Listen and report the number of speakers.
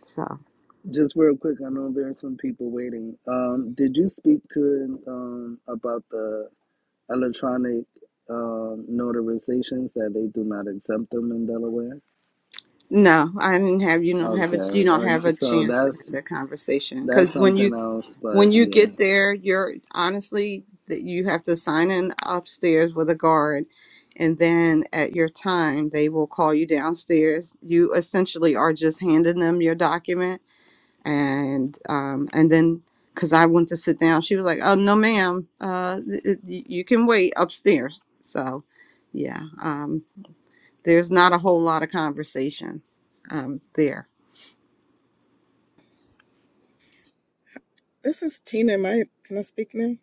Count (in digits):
3